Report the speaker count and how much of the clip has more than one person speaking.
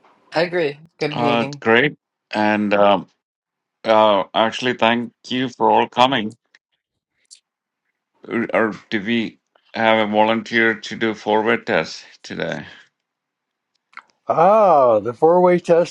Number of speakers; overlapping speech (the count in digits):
3, about 3%